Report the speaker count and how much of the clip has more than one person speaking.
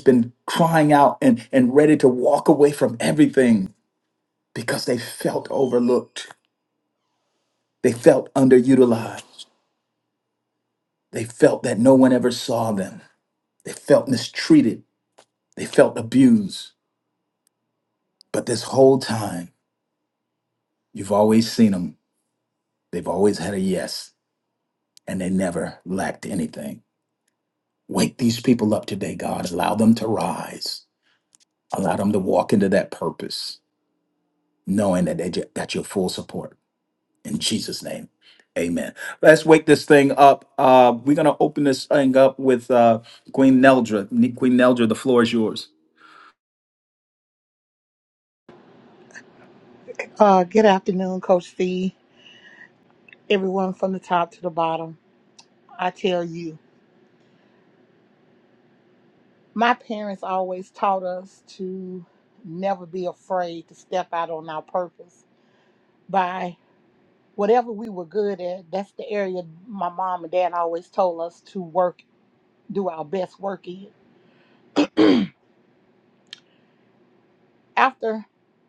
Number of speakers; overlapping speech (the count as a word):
two, no overlap